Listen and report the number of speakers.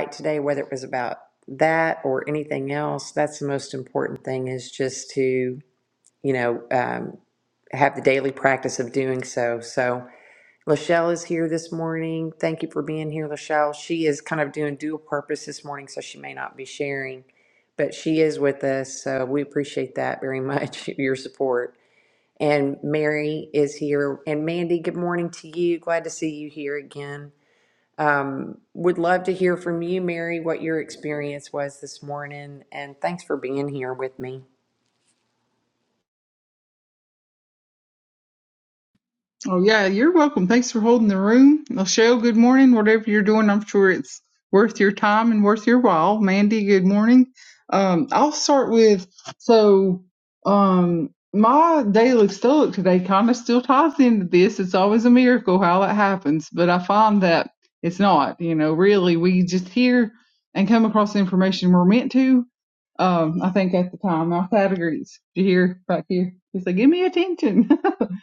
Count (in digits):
2